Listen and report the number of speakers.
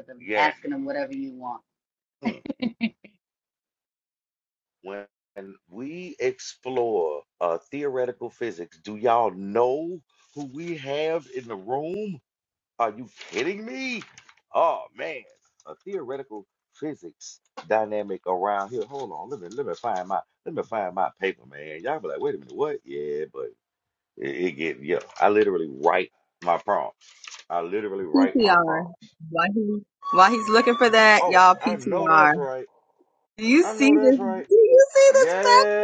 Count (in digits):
3